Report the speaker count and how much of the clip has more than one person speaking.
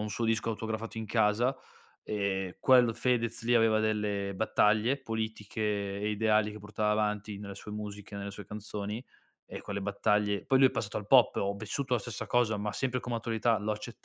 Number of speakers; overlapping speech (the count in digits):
1, no overlap